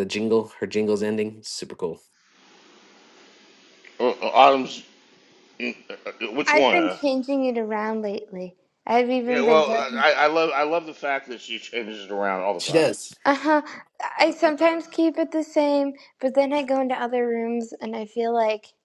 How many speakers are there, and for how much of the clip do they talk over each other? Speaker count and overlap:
three, about 9%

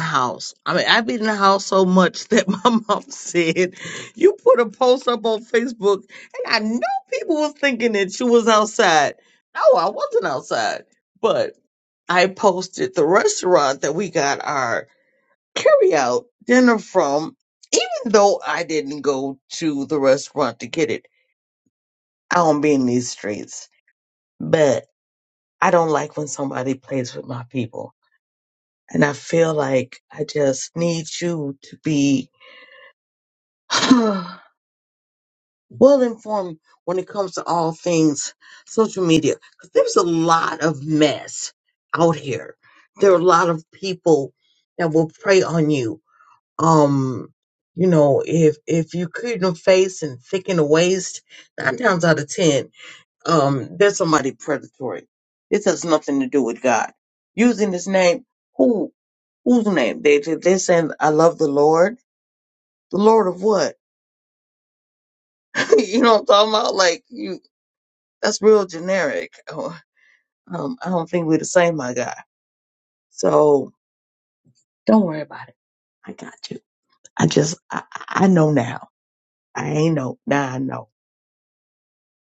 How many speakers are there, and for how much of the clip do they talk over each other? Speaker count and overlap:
one, no overlap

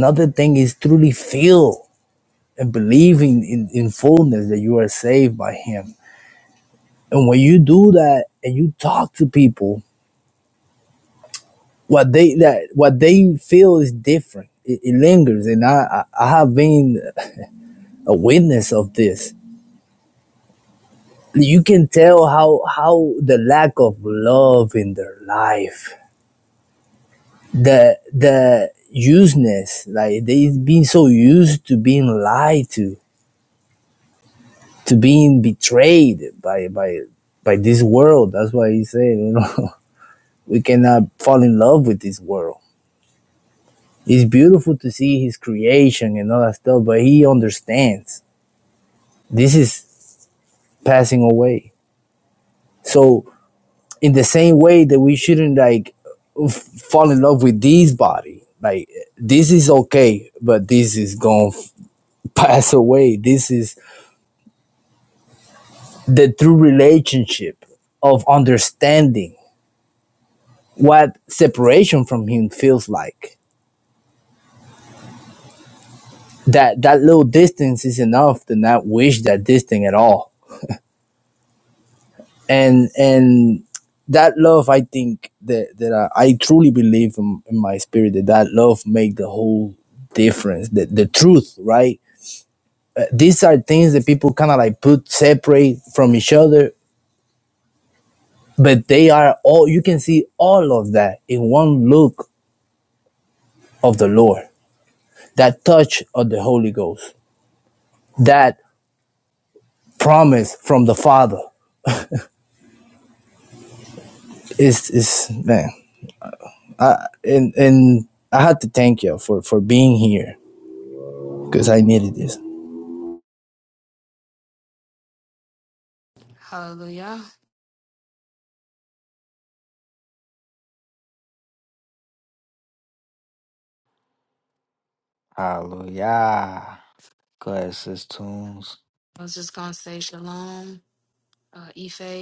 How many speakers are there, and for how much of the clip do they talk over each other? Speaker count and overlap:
three, no overlap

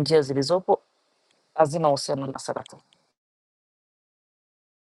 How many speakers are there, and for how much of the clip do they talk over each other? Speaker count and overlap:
one, no overlap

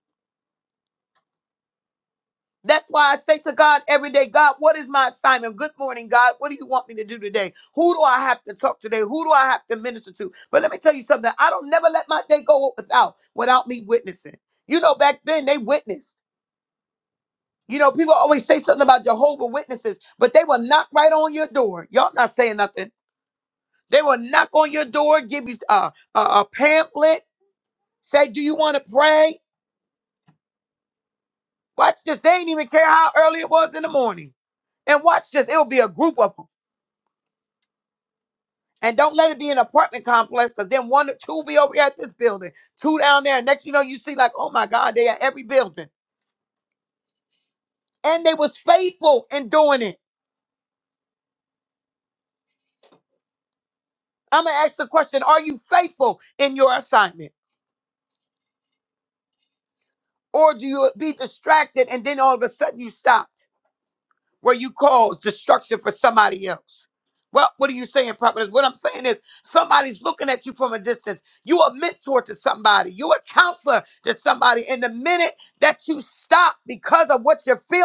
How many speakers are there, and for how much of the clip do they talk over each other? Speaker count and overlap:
one, no overlap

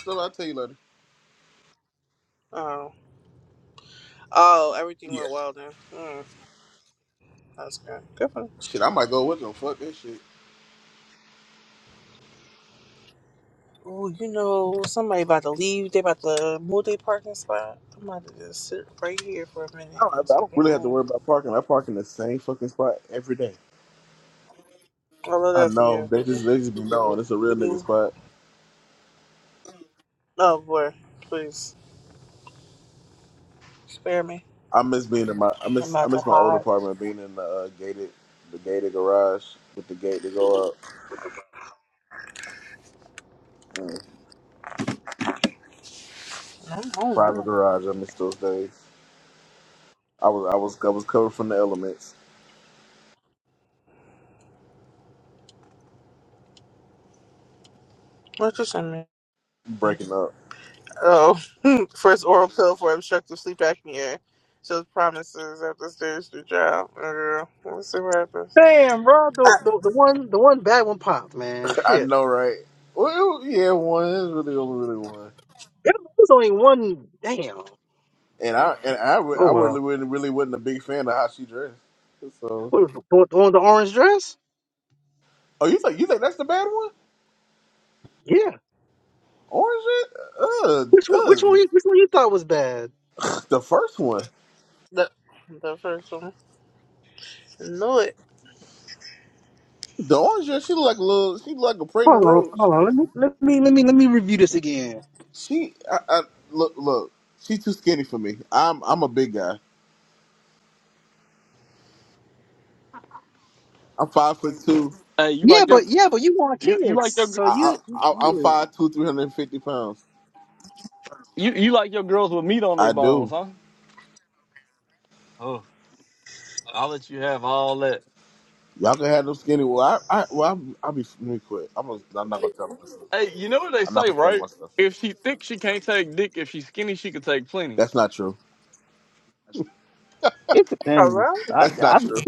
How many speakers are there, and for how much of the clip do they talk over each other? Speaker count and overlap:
four, about 6%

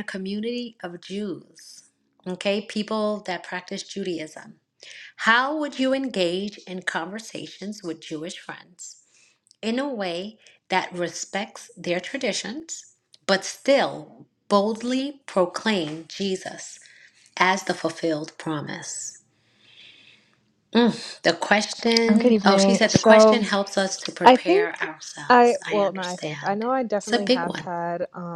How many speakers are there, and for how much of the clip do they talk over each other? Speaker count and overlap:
two, about 14%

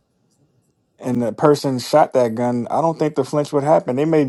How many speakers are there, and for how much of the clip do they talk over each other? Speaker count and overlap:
one, no overlap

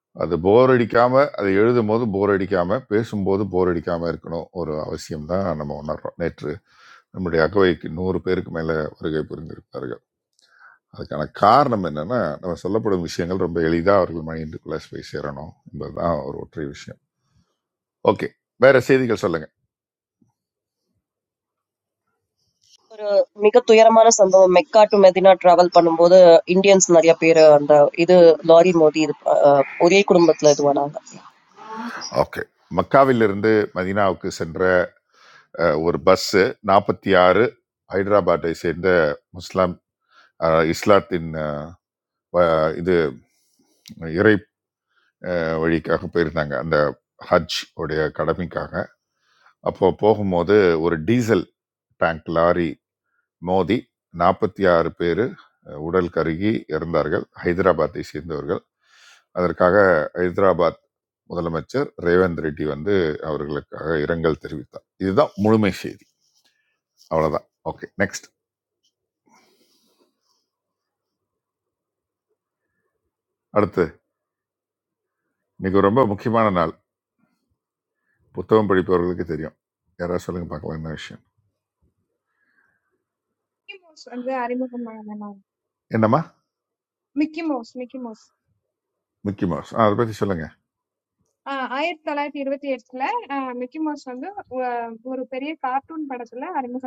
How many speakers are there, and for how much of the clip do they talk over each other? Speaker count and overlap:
three, no overlap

